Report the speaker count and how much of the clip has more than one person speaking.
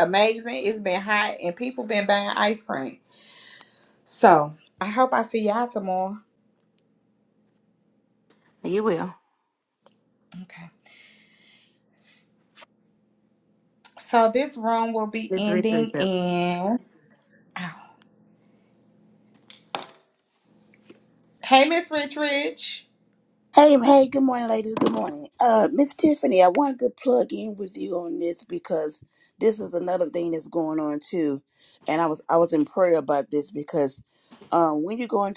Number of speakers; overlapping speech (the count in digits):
3, about 2%